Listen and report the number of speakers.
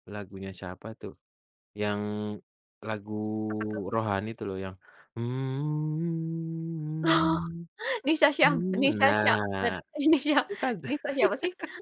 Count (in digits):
2